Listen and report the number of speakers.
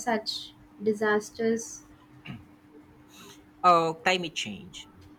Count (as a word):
two